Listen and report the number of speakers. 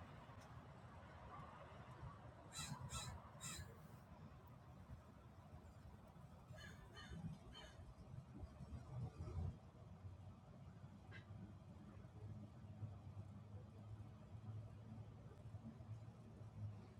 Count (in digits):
0